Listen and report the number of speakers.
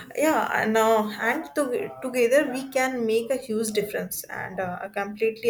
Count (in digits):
1